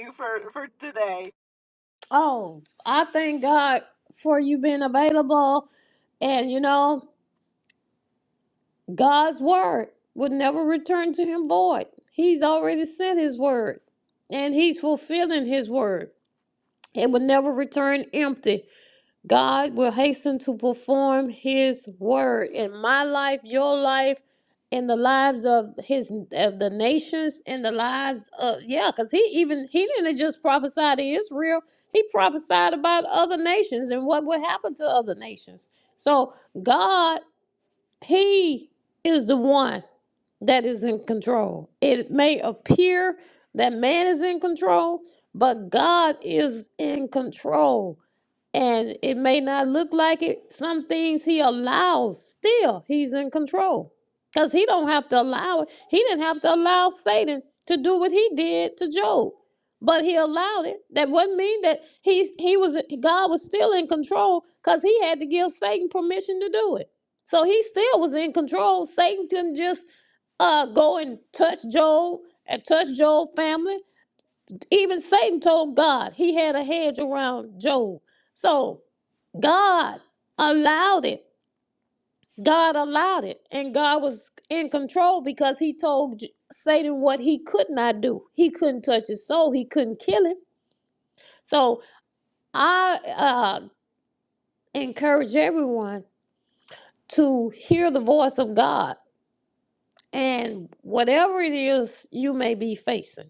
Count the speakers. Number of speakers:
2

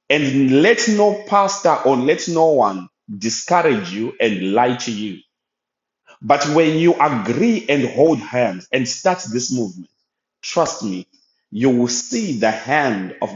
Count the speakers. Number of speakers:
1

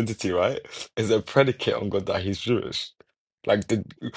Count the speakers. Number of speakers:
1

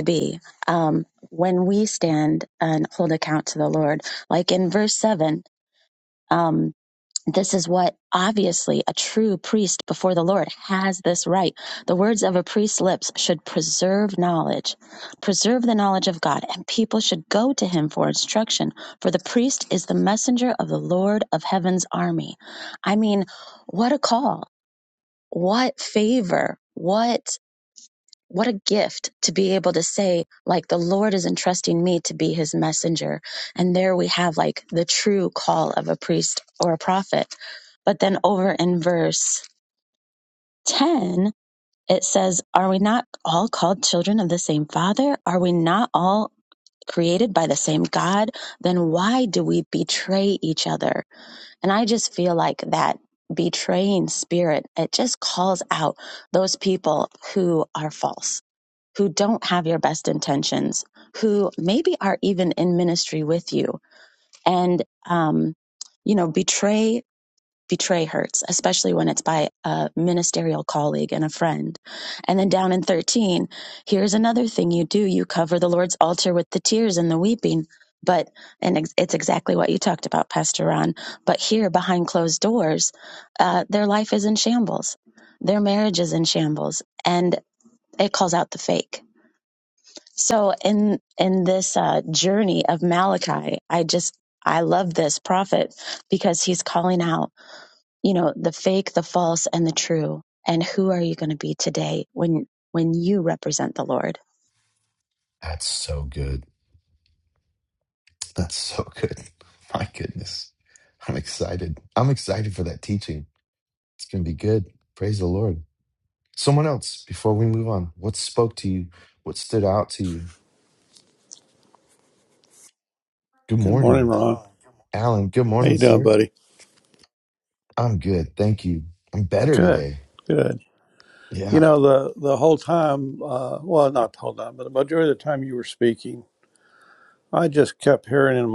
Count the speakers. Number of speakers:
3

